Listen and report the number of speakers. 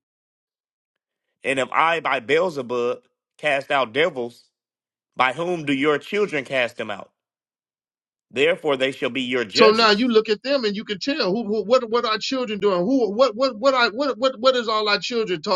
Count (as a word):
two